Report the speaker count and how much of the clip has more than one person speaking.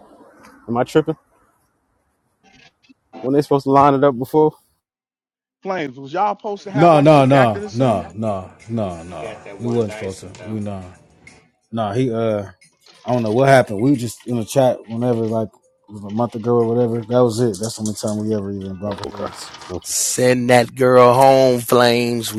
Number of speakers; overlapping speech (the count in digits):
4, about 8%